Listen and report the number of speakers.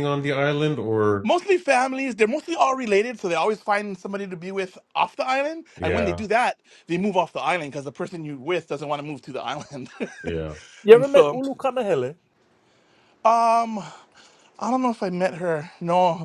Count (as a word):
three